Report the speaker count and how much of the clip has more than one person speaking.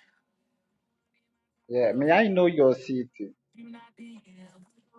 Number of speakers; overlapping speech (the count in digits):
1, no overlap